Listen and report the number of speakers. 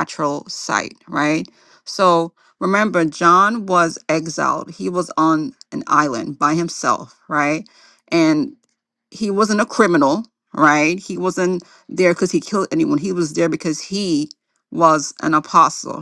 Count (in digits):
1